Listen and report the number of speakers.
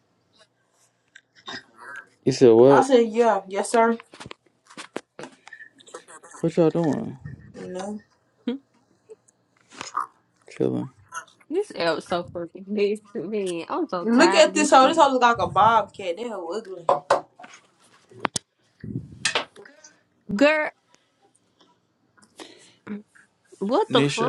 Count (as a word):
three